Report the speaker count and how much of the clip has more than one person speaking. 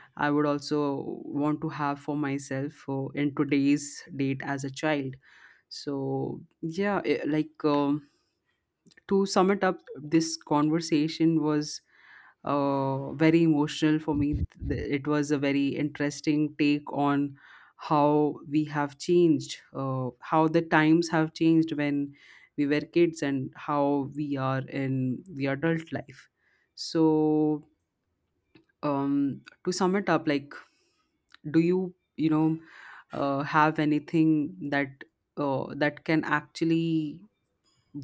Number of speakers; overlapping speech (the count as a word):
one, no overlap